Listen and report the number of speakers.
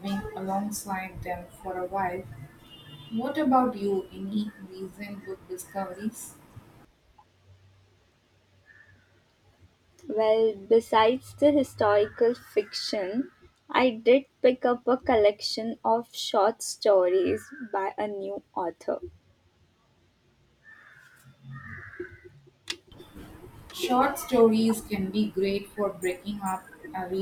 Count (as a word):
two